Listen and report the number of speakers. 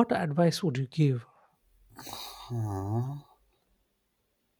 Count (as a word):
two